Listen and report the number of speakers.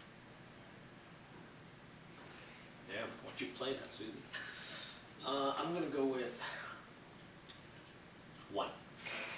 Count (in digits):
1